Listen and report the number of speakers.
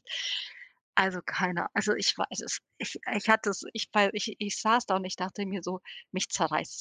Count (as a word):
one